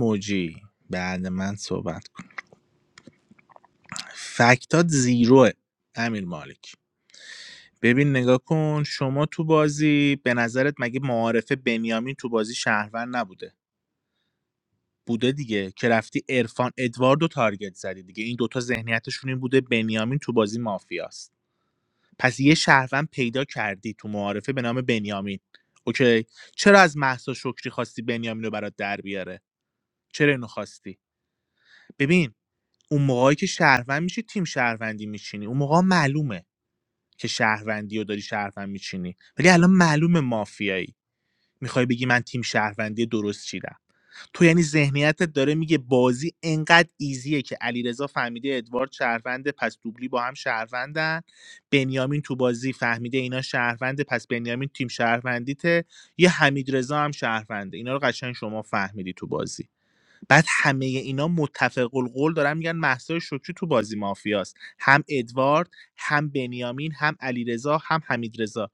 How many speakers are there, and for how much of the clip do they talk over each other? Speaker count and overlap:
1, no overlap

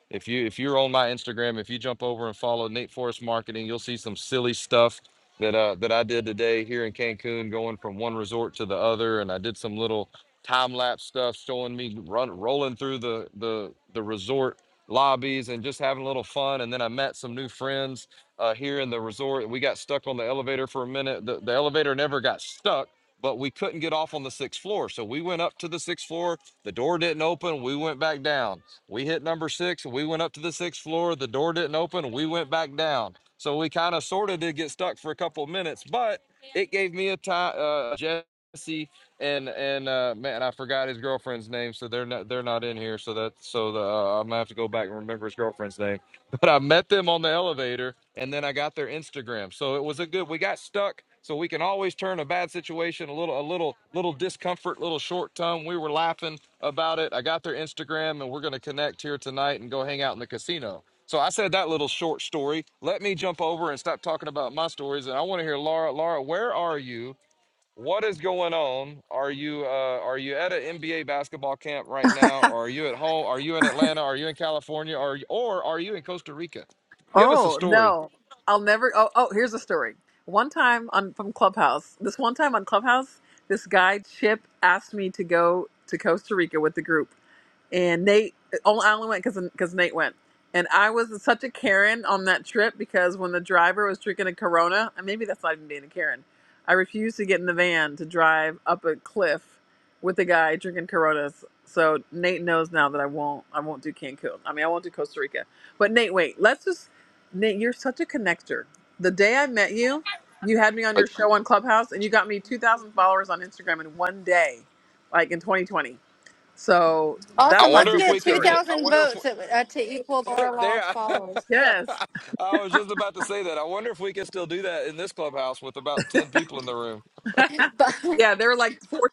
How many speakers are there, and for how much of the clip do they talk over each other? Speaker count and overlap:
3, about 2%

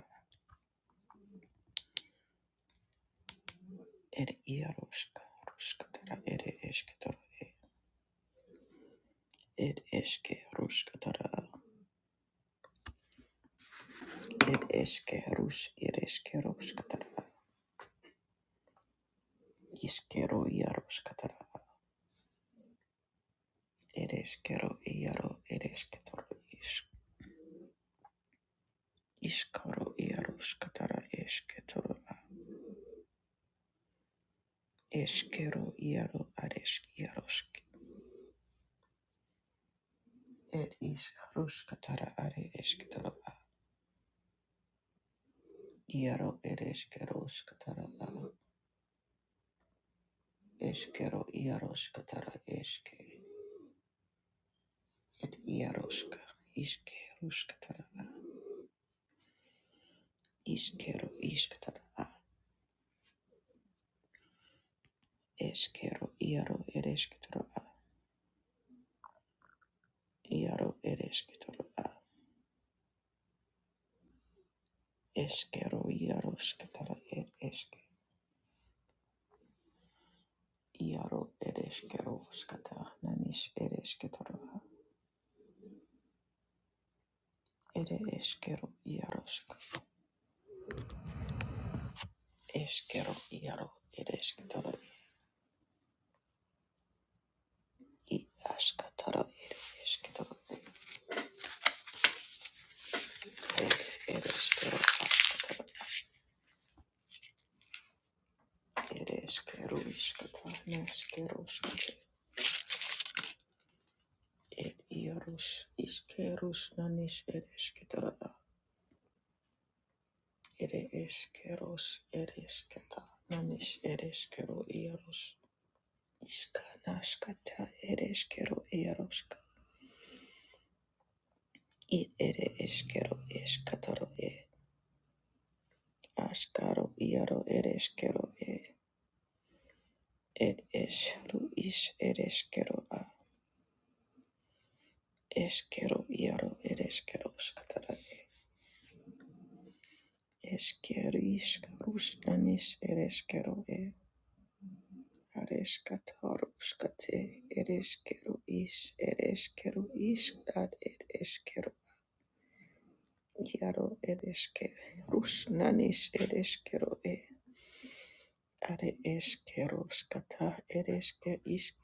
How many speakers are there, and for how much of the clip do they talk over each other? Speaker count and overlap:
1, no overlap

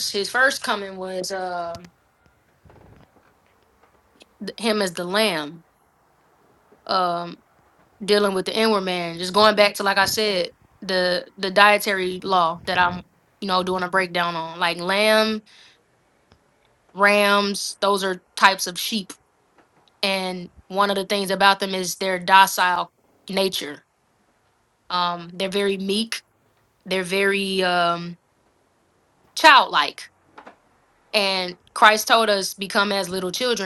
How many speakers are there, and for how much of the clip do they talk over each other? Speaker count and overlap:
1, no overlap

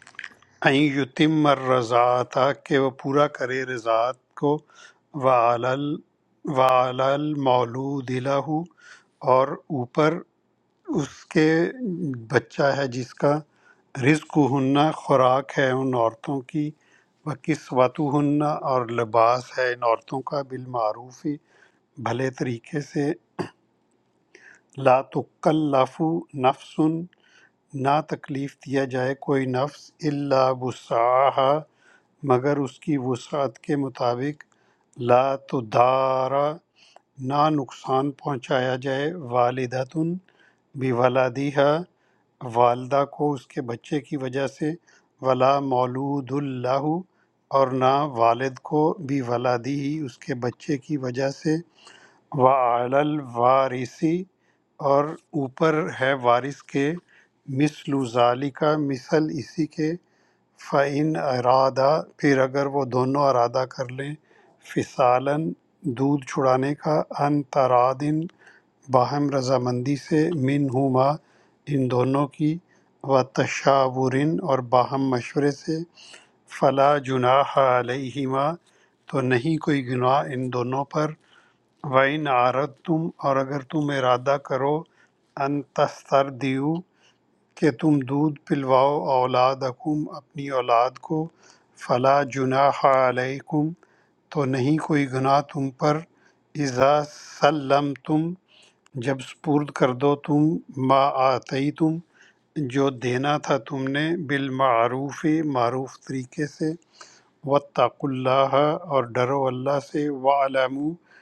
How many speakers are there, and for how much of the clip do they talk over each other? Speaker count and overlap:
1, no overlap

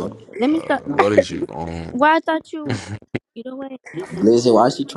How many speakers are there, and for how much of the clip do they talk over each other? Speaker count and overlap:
3, about 11%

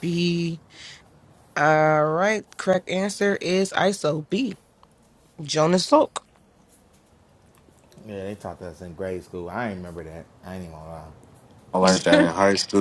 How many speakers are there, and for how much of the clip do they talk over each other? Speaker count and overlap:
3, no overlap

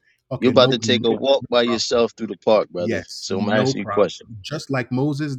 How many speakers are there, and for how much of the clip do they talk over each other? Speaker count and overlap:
2, about 52%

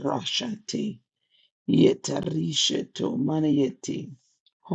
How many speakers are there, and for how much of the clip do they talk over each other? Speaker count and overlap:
1, no overlap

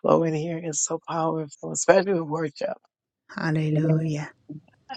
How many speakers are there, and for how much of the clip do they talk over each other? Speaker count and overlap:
2, about 8%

